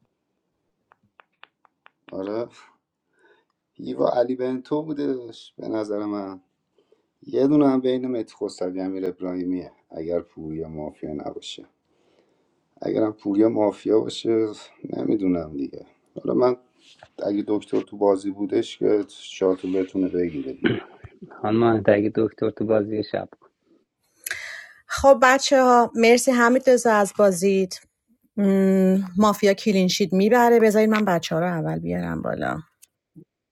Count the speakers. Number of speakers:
3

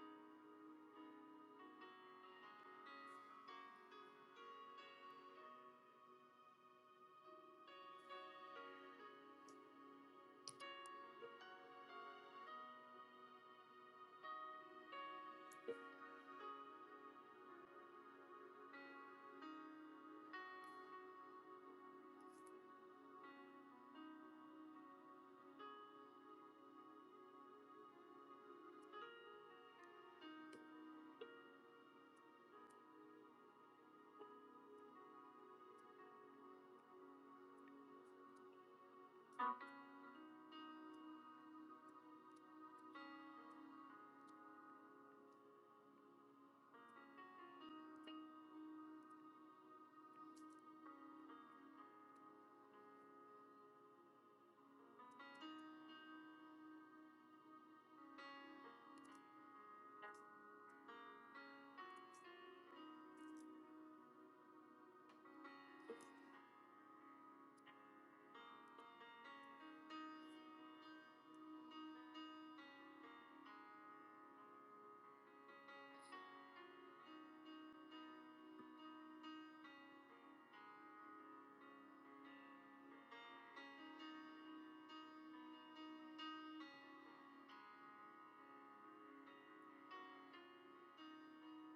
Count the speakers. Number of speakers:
0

